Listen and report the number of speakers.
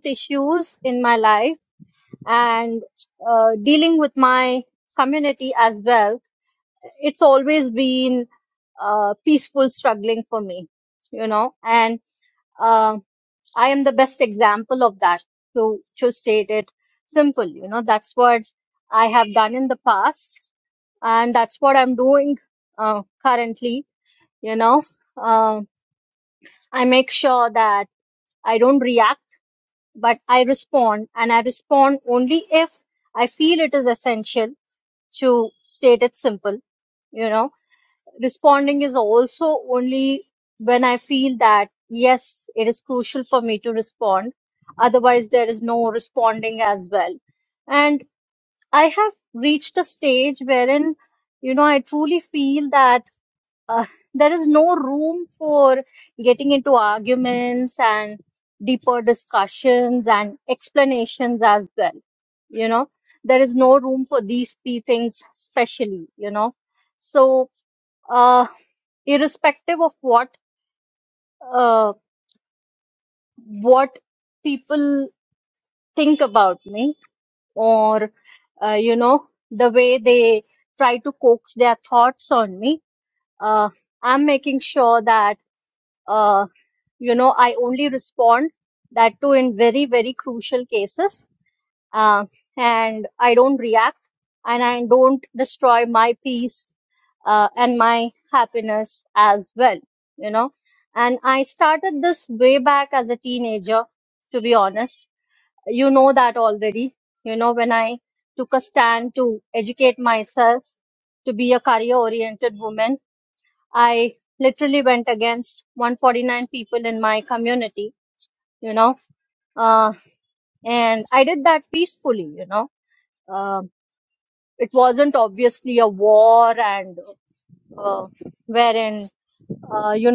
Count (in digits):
1